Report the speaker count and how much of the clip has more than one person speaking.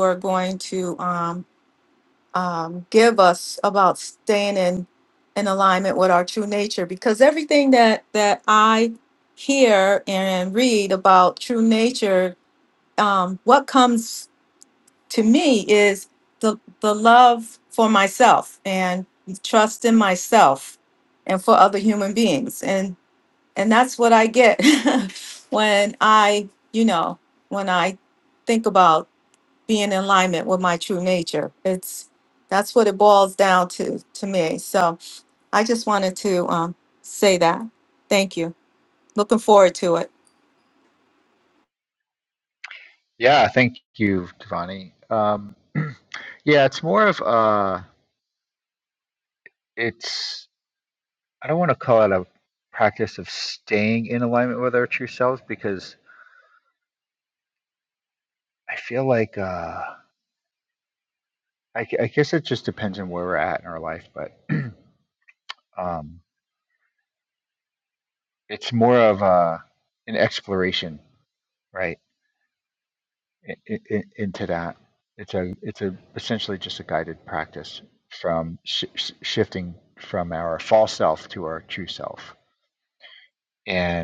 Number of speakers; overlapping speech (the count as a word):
two, no overlap